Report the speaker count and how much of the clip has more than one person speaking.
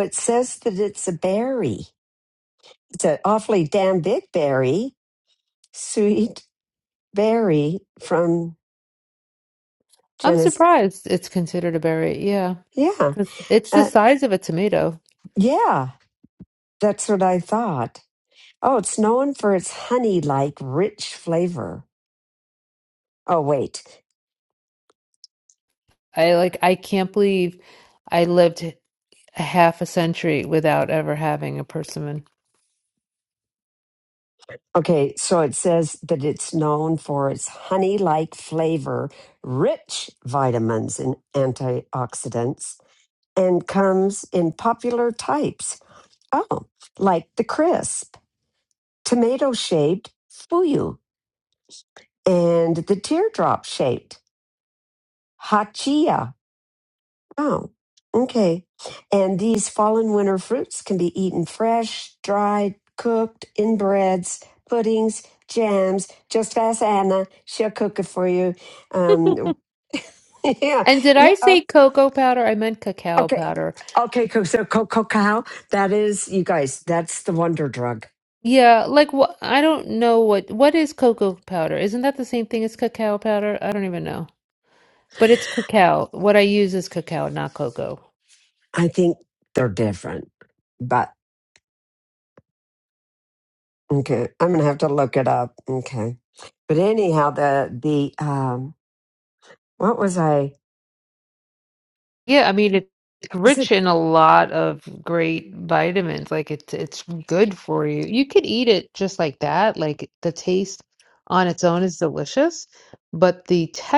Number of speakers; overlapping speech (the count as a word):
two, about 2%